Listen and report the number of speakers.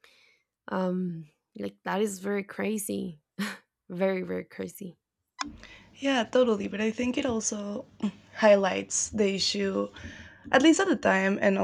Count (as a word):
two